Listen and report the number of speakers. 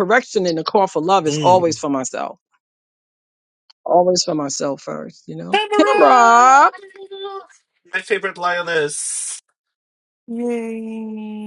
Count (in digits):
3